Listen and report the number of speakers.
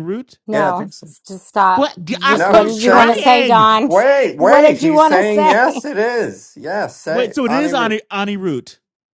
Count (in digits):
3